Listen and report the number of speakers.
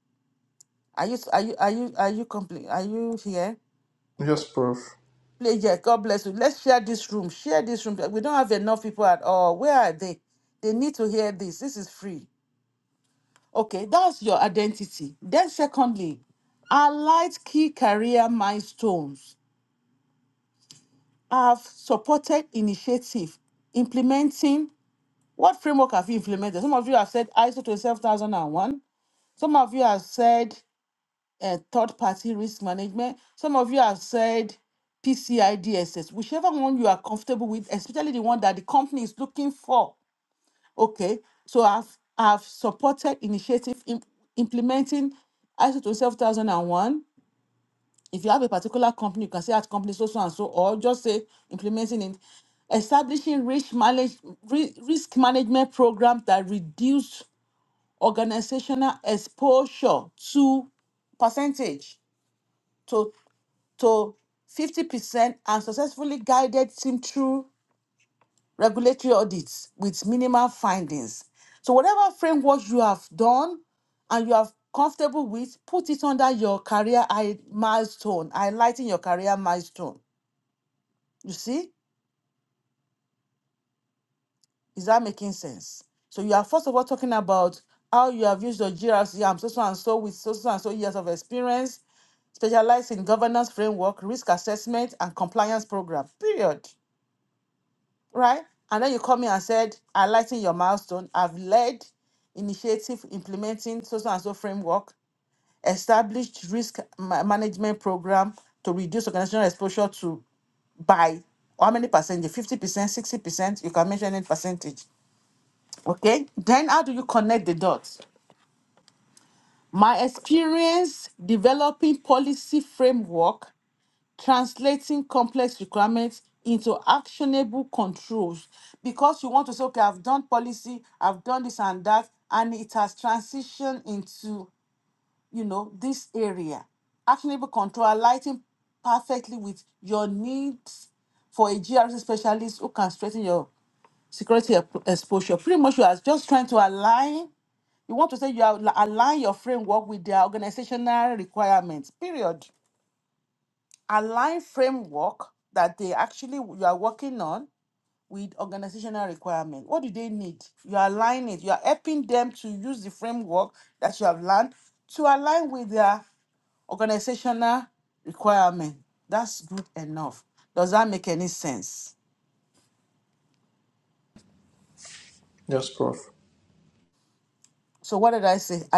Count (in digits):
2